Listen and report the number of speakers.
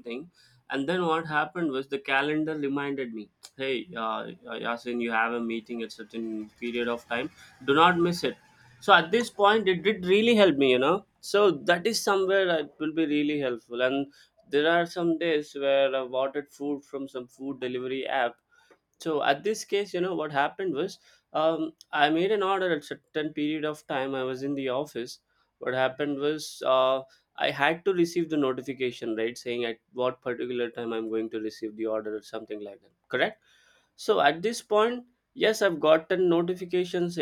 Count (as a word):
one